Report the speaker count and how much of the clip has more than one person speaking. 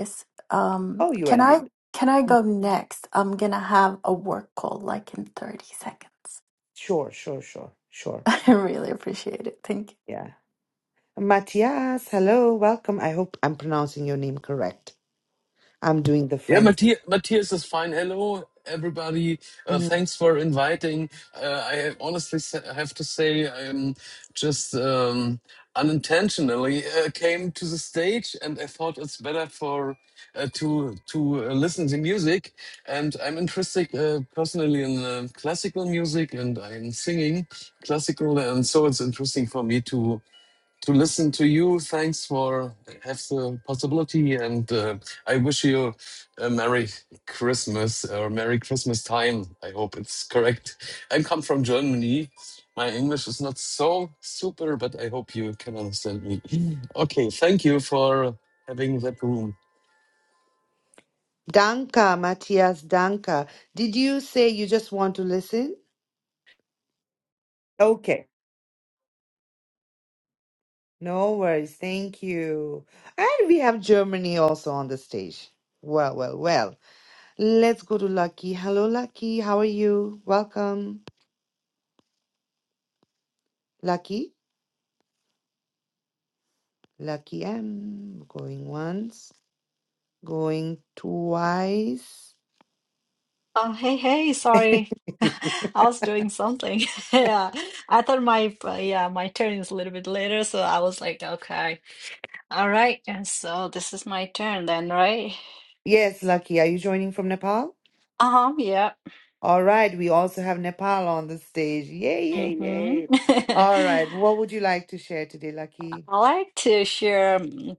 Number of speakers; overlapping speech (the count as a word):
four, about 2%